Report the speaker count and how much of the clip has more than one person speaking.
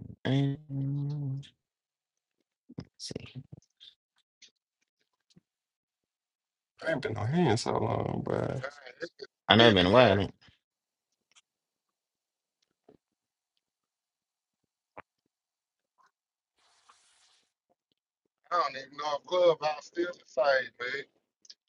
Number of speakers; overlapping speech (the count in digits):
3, about 3%